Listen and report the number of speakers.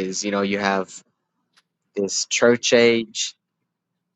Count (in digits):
1